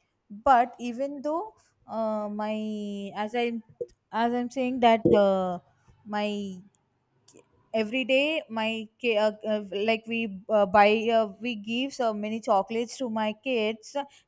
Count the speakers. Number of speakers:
one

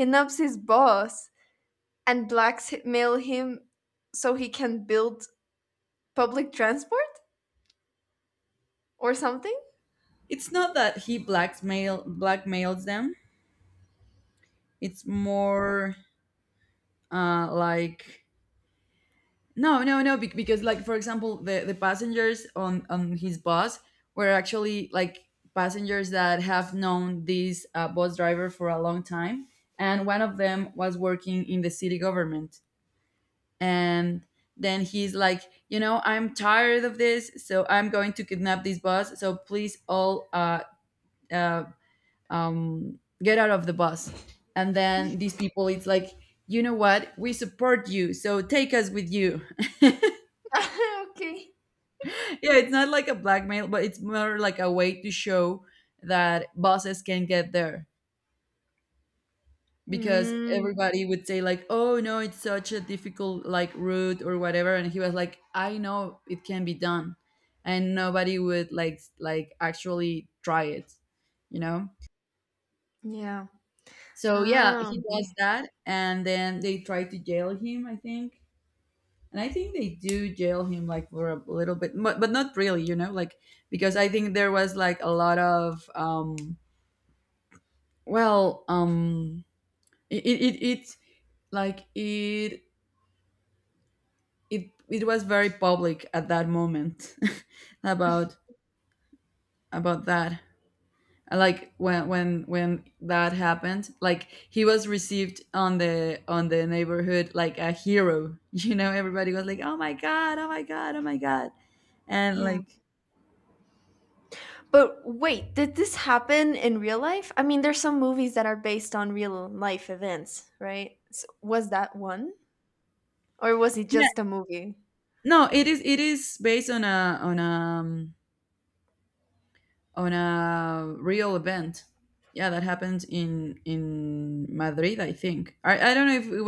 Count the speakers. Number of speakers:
two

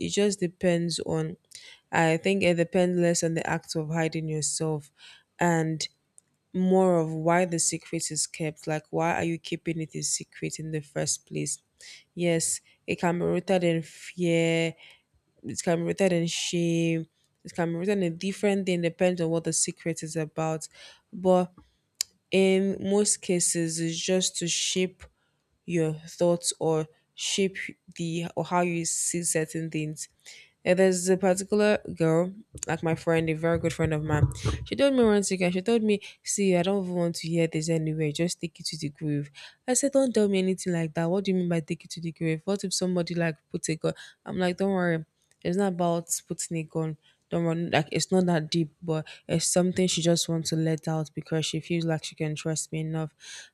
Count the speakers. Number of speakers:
one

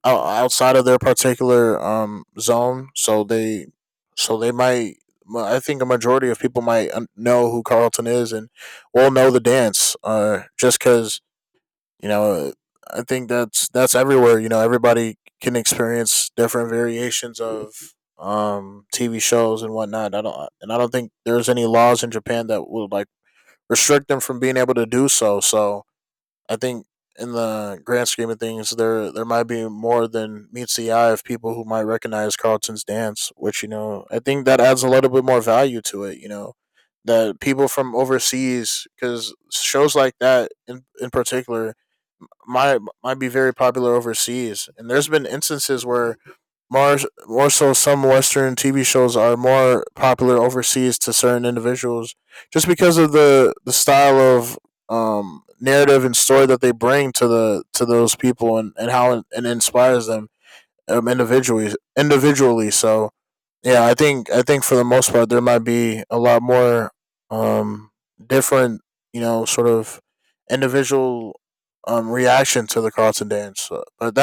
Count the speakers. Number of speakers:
one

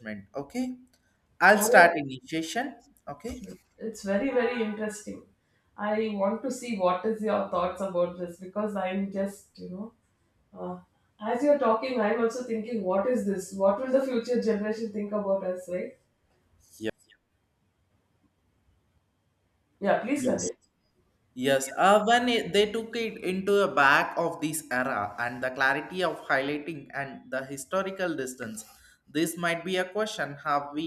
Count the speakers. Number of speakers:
two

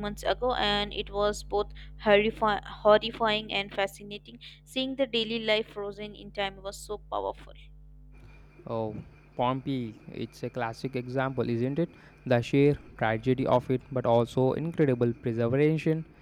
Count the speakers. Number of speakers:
two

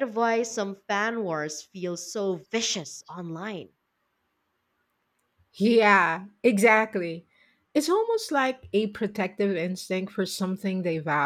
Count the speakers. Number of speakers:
two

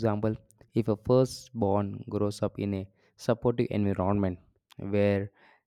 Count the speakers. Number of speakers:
one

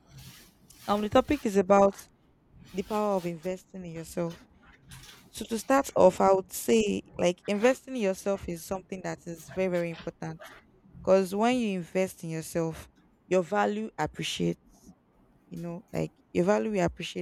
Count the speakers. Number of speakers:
one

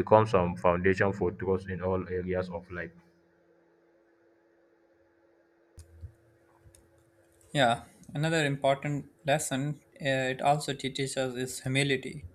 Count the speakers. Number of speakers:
two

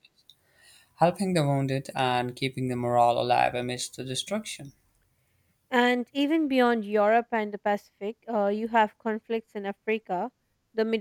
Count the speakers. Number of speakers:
two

